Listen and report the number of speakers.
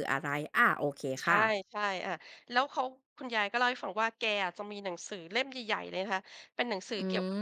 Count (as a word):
two